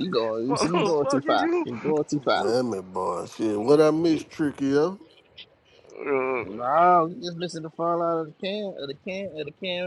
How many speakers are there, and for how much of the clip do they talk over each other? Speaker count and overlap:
3, about 14%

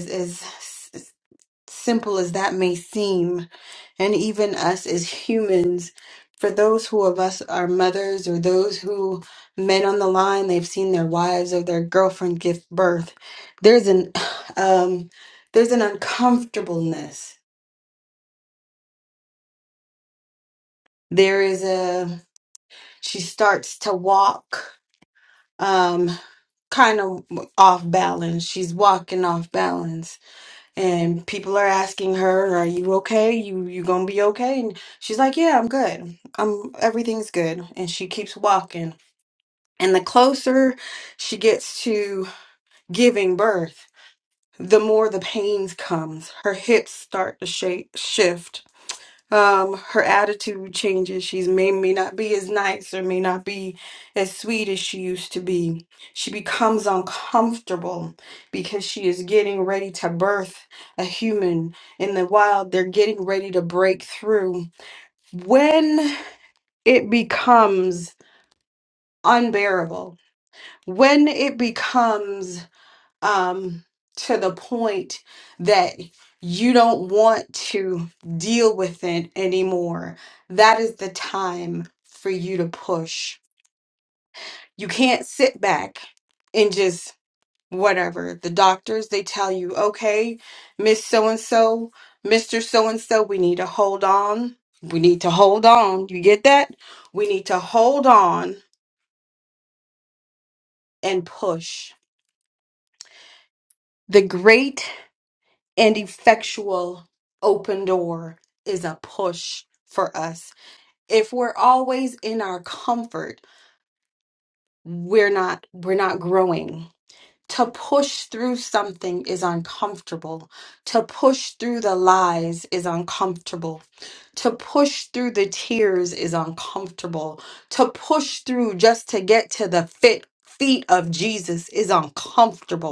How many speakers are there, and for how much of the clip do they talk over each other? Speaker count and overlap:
1, no overlap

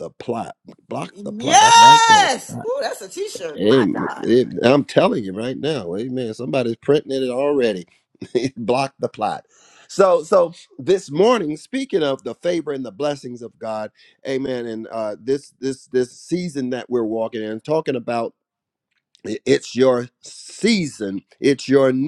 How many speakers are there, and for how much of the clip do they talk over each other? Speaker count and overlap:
2, about 8%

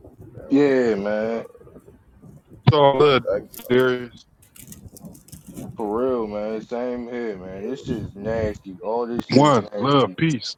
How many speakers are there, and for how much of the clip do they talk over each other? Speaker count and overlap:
3, about 20%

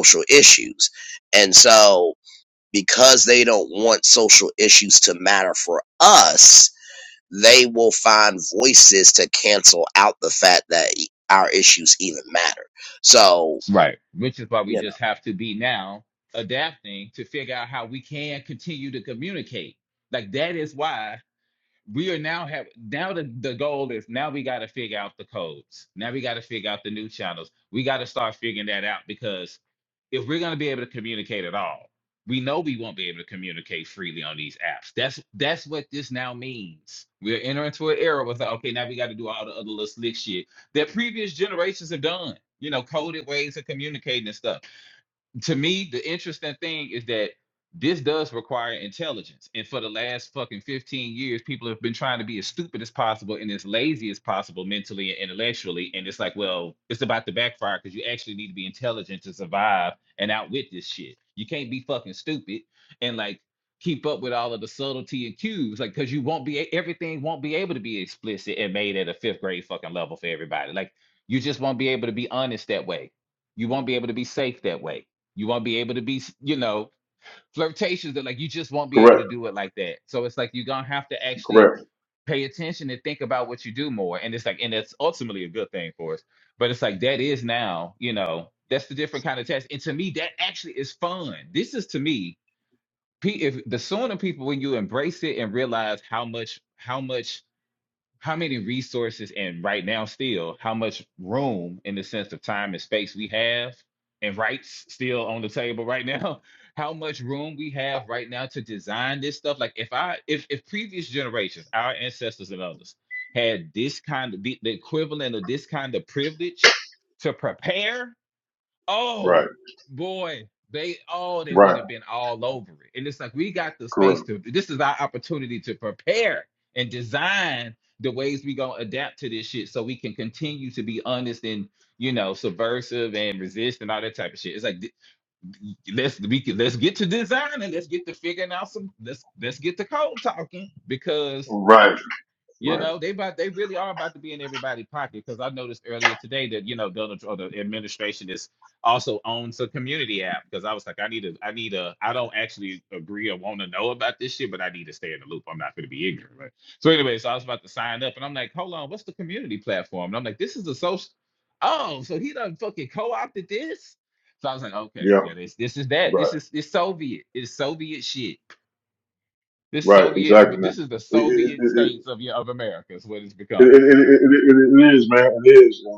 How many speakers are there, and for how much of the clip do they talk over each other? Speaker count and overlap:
3, about 2%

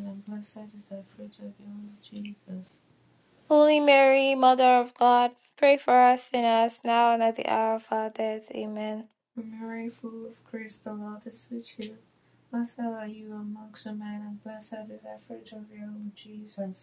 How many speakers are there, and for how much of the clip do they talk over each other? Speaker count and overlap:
2, no overlap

